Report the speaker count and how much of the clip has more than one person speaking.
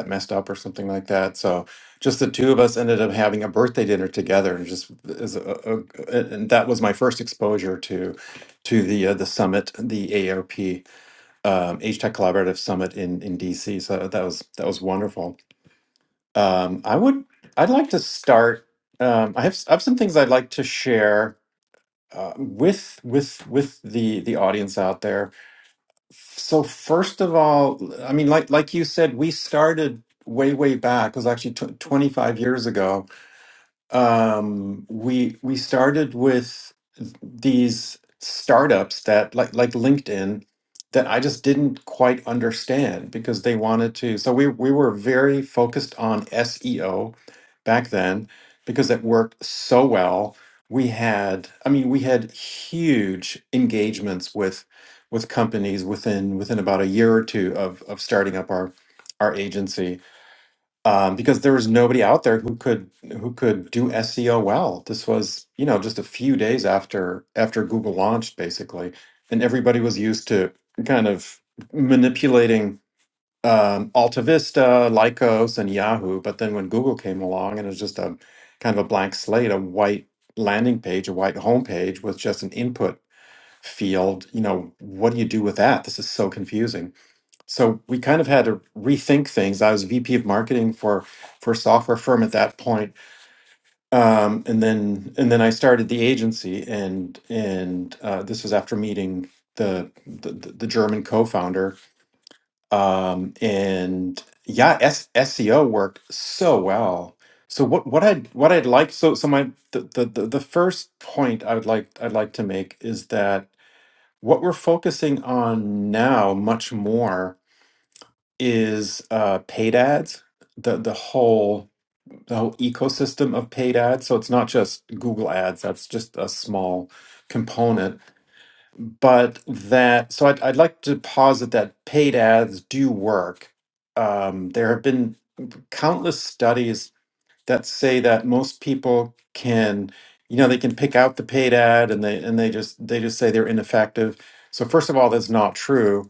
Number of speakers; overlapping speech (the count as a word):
one, no overlap